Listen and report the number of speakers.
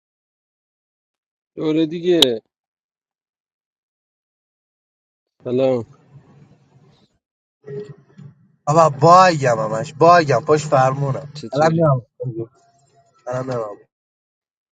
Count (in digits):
2